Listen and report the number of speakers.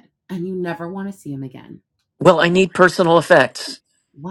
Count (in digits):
2